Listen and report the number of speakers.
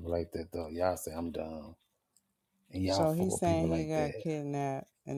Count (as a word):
two